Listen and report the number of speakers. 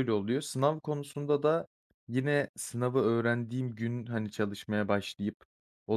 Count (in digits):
1